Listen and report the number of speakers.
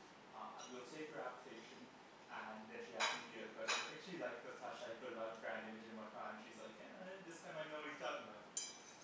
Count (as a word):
one